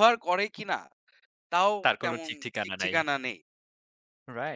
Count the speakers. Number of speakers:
two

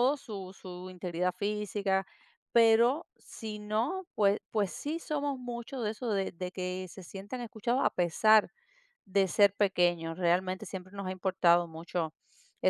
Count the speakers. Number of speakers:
one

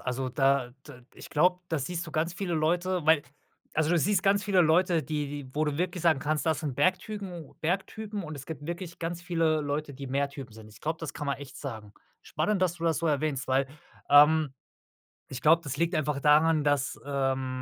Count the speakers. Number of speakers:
one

